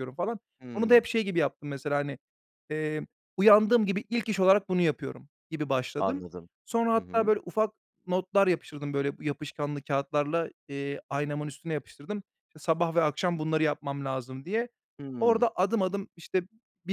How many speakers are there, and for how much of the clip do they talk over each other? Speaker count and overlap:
two, about 6%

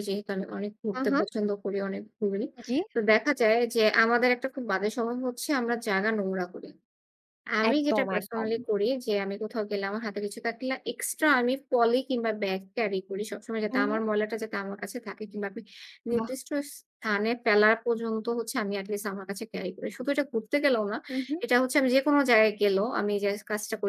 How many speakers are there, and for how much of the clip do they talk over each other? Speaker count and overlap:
two, about 7%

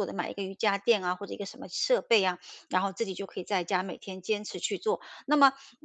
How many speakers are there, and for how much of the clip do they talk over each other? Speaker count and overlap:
one, no overlap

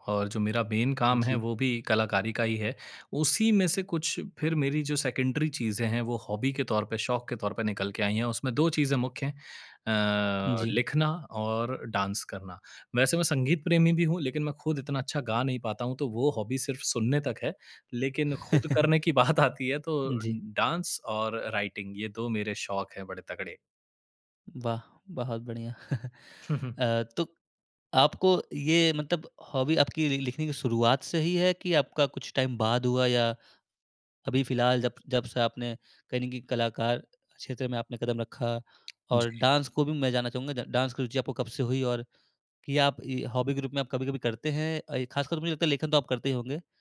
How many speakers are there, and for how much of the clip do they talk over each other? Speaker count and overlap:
two, about 3%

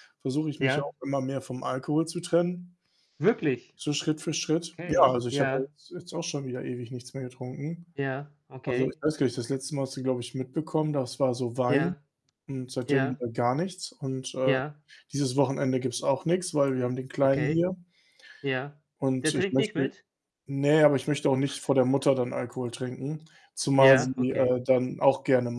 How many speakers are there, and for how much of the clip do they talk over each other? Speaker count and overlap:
two, about 15%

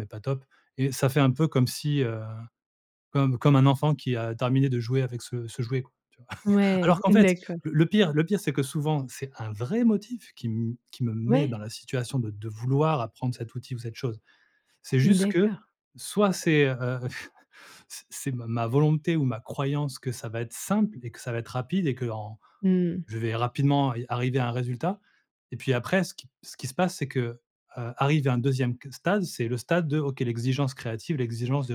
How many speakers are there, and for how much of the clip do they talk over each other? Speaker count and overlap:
two, about 5%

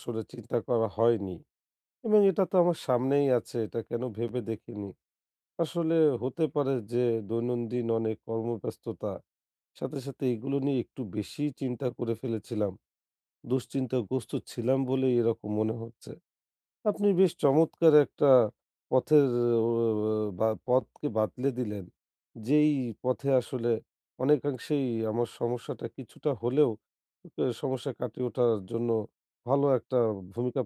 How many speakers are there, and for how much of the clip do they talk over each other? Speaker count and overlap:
one, no overlap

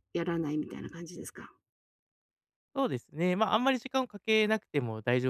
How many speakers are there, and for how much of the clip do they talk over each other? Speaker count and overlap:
two, no overlap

